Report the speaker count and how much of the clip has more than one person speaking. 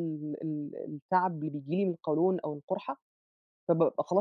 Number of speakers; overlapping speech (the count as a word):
one, no overlap